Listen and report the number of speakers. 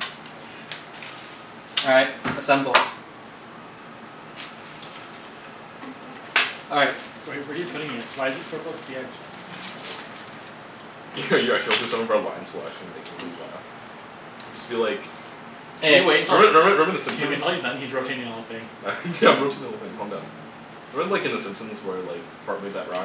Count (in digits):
3